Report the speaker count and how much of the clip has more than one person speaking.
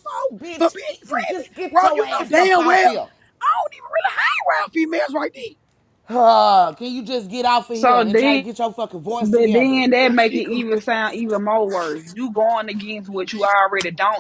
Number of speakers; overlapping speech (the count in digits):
3, about 32%